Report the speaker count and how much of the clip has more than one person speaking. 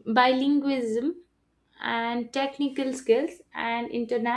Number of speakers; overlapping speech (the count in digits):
1, no overlap